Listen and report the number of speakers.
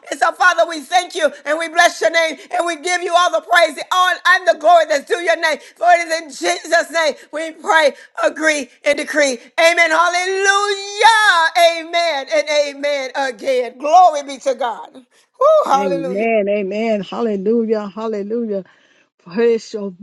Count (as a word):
two